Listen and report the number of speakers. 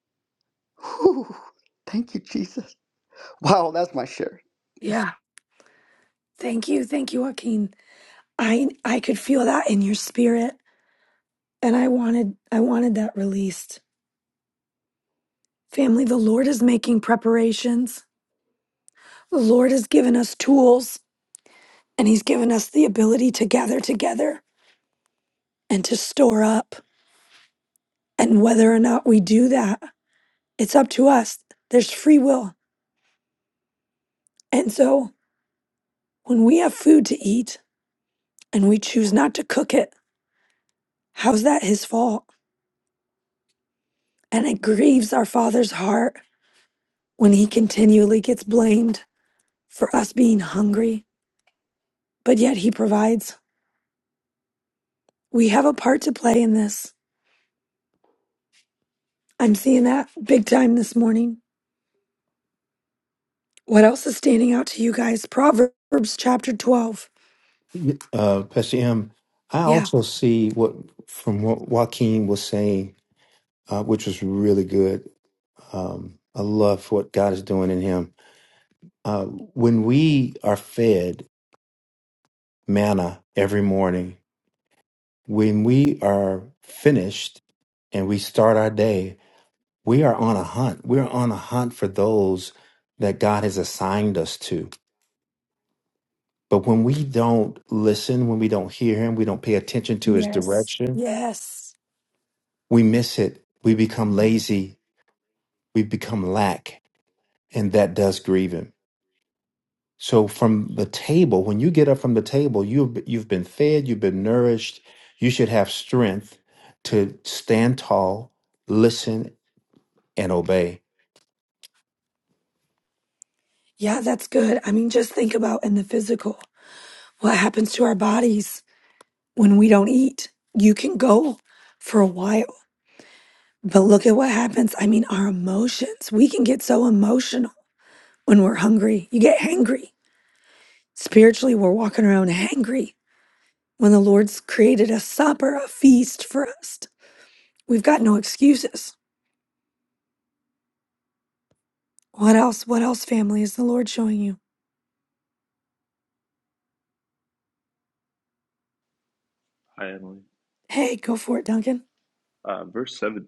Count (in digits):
4